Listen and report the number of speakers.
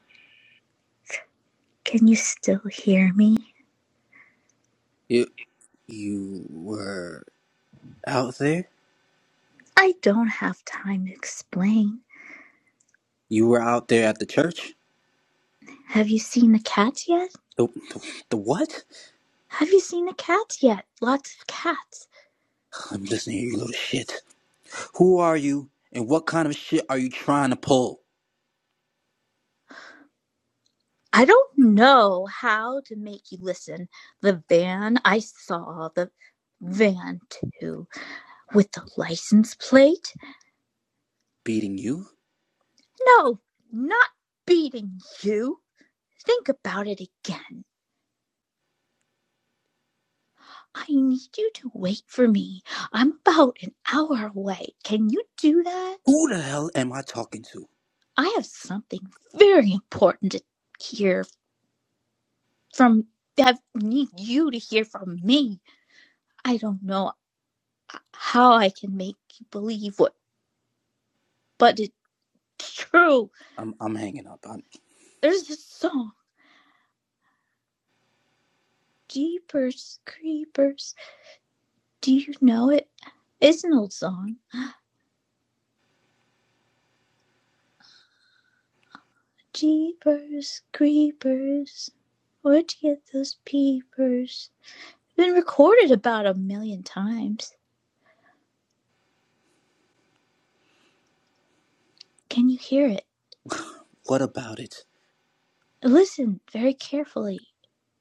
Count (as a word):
two